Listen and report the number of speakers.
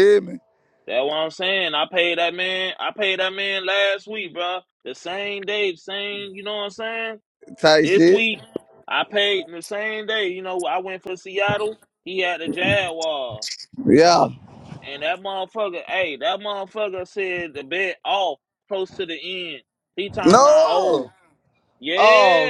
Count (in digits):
2